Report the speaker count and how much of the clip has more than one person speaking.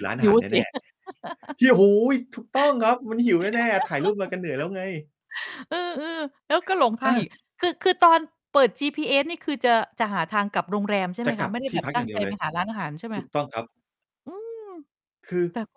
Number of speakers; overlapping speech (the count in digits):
2, about 13%